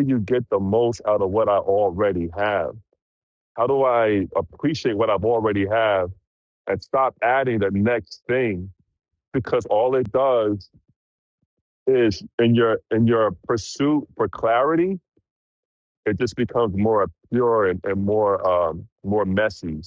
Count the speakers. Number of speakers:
1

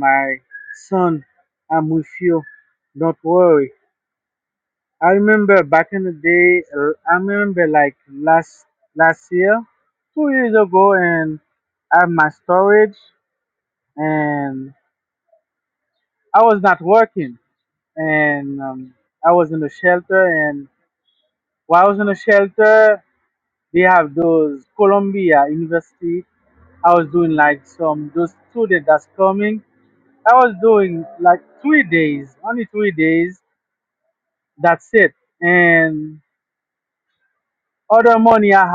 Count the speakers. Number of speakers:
1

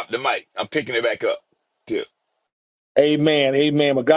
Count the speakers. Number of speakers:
2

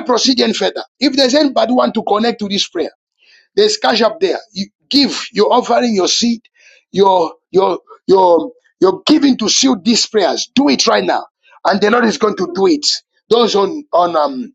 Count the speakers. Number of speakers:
1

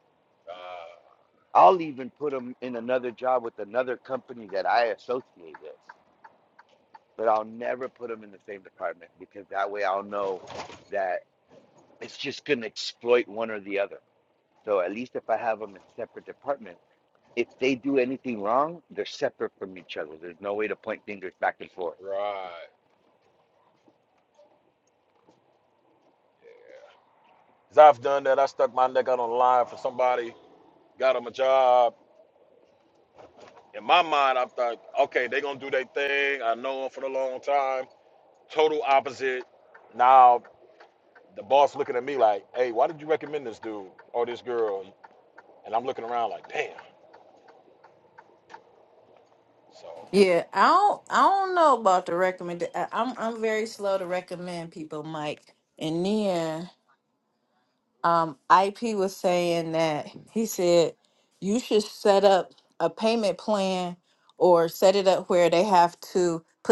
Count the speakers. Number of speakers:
3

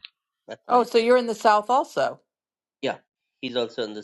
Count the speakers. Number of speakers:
2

